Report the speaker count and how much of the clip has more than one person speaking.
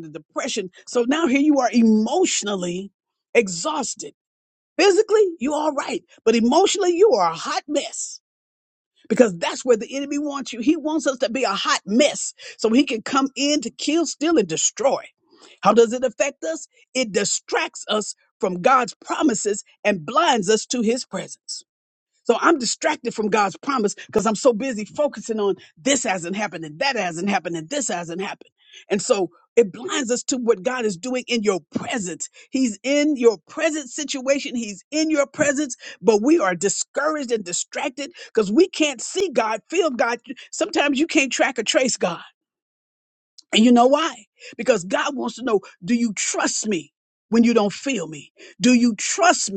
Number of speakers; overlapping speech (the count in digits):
1, no overlap